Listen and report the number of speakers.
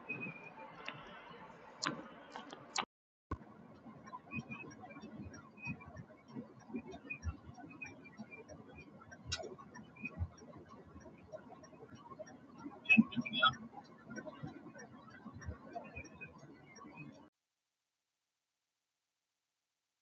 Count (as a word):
zero